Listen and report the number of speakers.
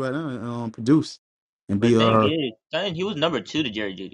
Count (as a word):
two